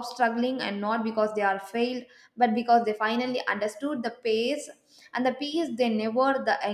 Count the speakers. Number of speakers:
1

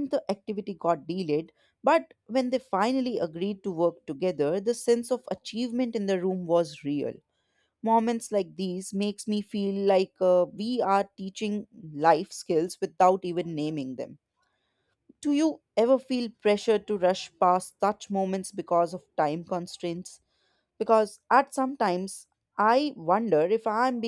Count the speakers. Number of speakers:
1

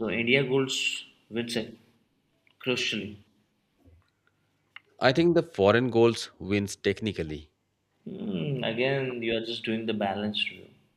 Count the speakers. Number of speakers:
2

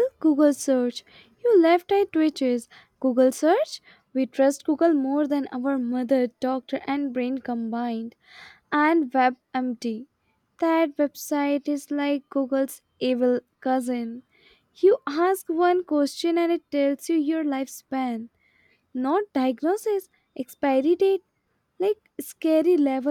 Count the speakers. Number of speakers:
1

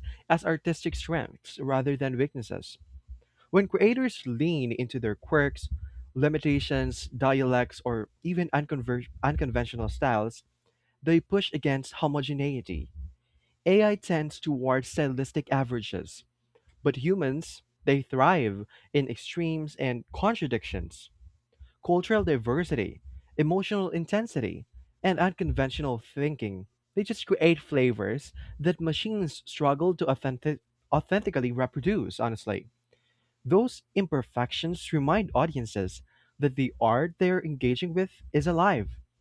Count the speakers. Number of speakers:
1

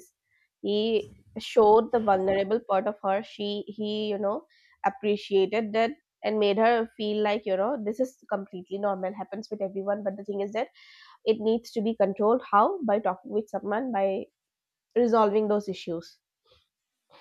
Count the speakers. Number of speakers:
1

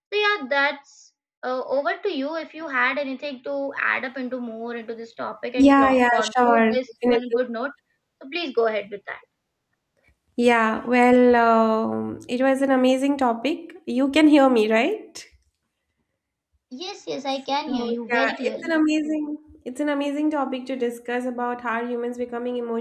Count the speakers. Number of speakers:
2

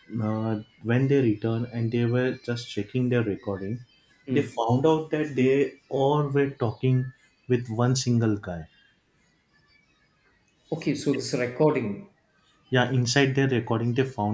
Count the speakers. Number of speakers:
2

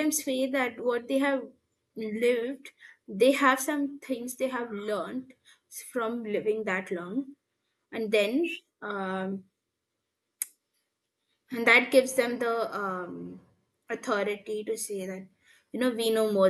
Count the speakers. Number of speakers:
1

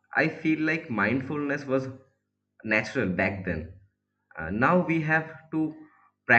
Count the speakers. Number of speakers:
1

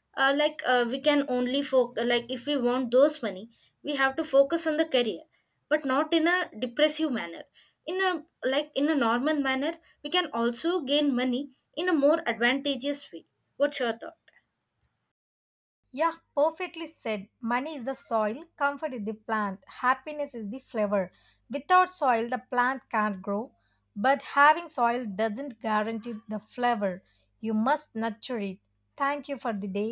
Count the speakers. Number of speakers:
2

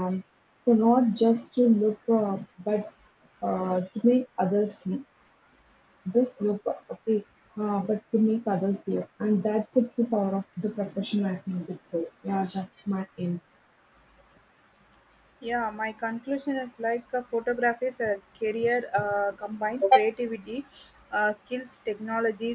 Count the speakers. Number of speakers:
2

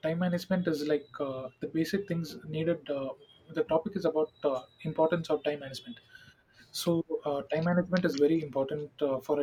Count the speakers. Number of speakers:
1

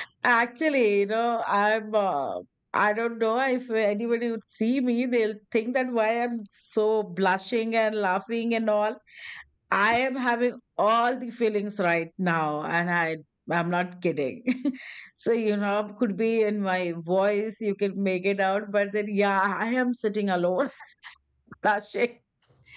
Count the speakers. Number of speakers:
1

